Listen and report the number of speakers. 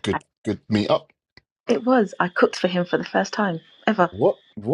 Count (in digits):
2